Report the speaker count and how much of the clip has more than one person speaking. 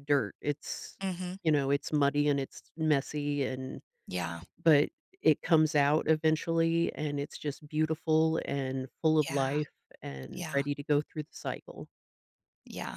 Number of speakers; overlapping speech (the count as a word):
two, about 6%